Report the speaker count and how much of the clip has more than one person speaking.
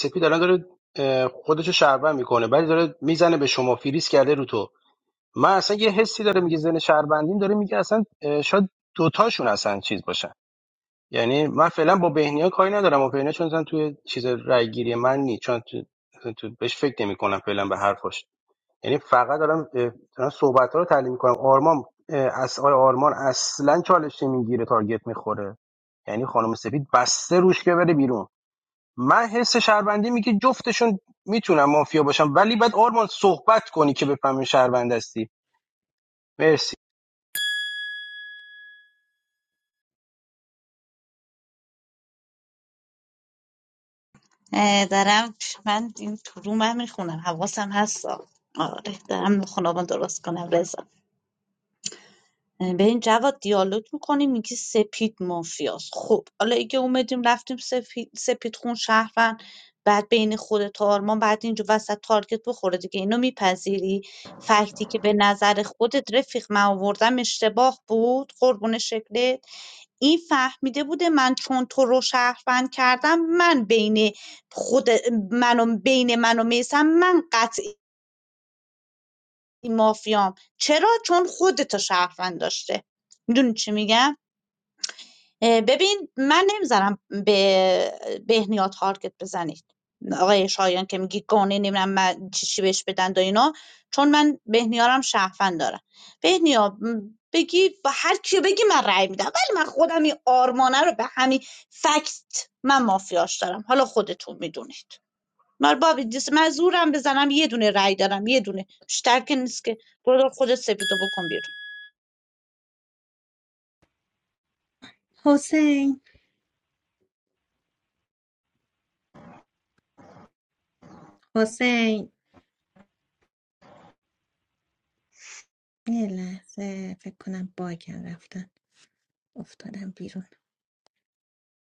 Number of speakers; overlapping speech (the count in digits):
3, no overlap